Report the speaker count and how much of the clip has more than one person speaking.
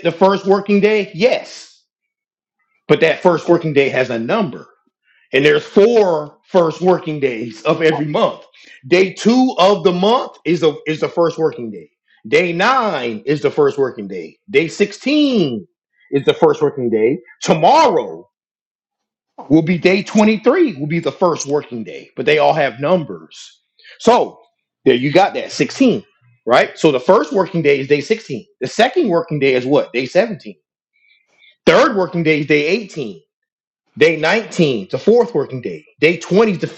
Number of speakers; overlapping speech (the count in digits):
1, no overlap